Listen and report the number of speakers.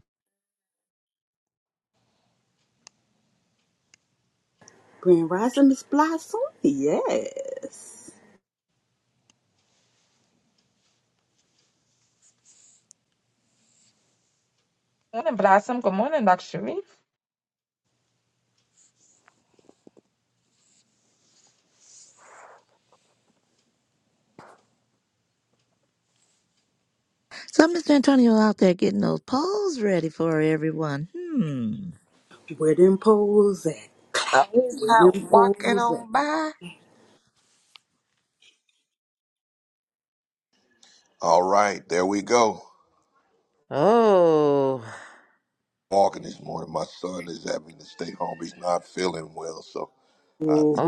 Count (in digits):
5